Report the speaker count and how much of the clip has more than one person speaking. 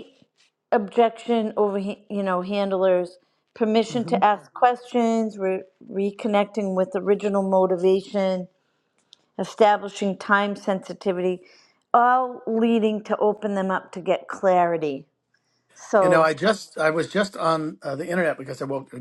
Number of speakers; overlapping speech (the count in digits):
2, about 3%